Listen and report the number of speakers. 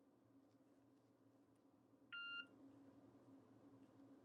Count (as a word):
zero